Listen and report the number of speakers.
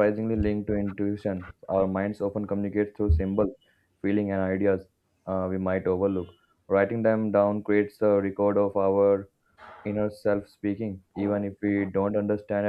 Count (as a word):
one